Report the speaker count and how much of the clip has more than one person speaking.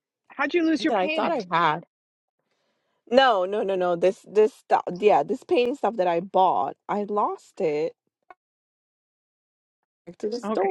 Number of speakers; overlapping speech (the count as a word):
two, about 8%